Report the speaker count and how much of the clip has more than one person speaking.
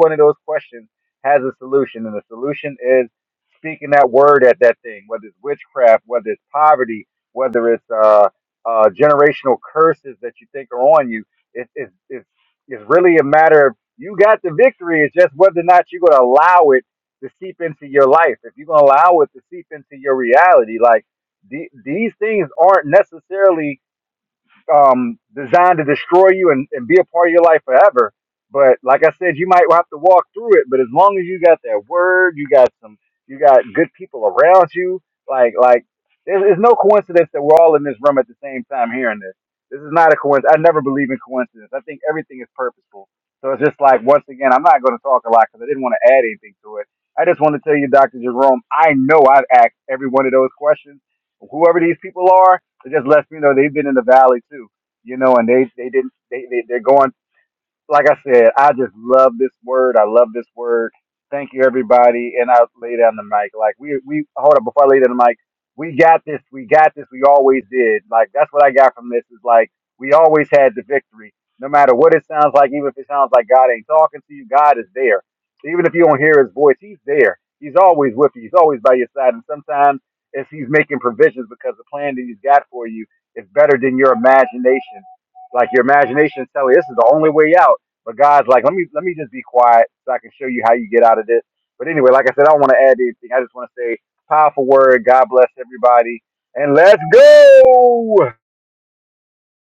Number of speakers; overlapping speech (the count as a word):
one, no overlap